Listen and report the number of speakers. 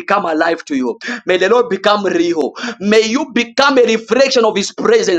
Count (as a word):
one